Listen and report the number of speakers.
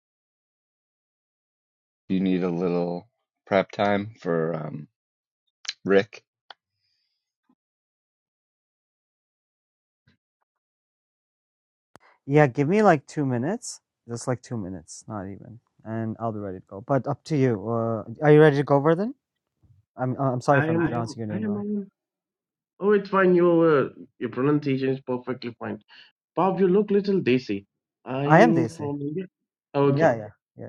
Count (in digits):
3